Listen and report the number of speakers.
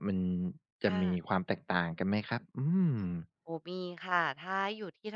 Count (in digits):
2